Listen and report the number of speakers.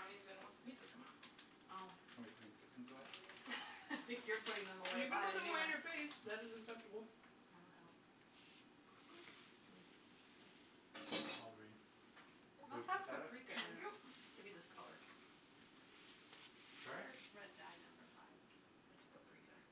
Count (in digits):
4